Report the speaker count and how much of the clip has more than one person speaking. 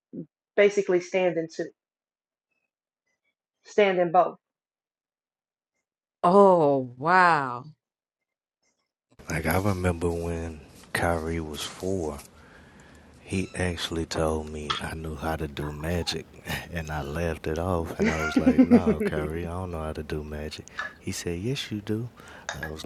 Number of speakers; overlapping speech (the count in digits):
3, no overlap